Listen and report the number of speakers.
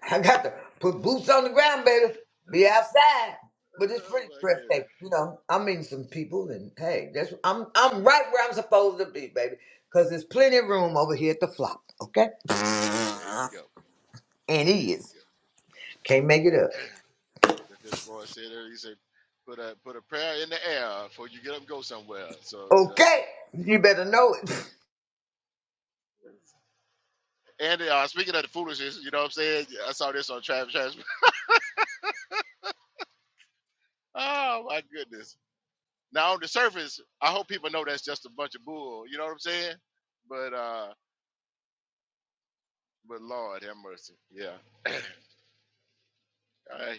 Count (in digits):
2